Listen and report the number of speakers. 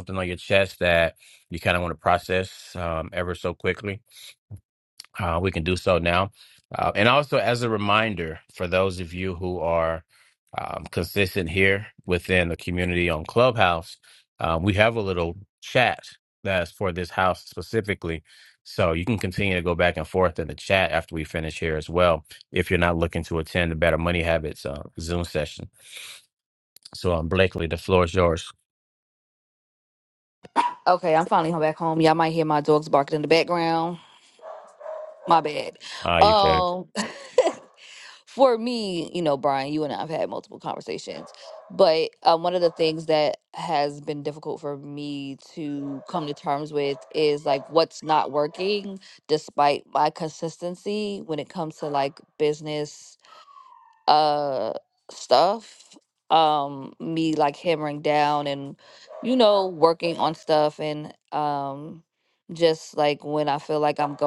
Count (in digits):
2